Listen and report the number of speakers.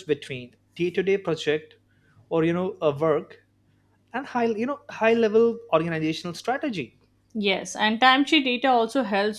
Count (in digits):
2